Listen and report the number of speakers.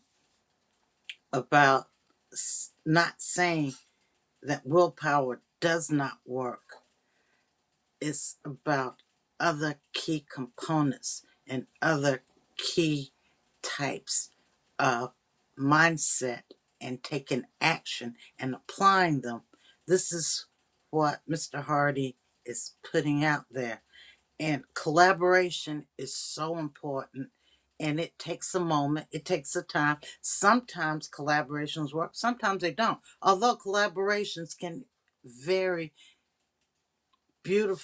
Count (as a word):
one